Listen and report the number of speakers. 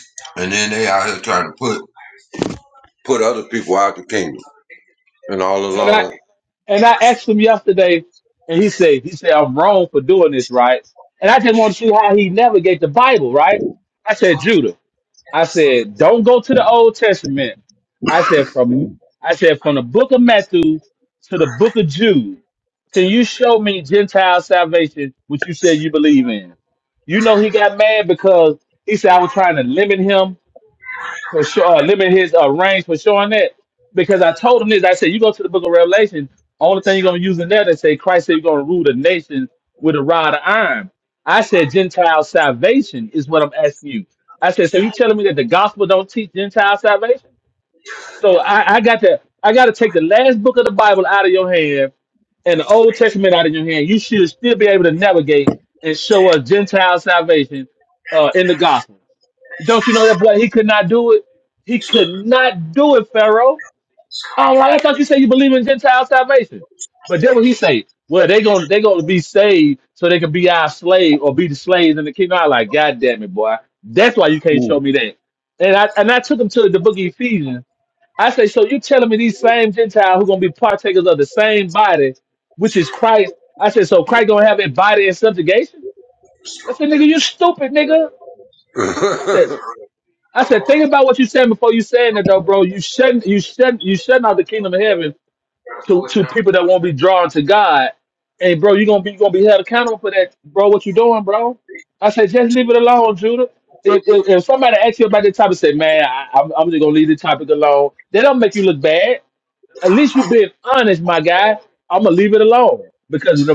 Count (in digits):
2